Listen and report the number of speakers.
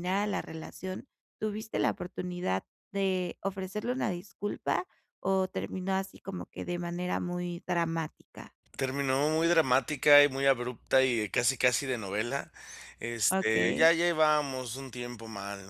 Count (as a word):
two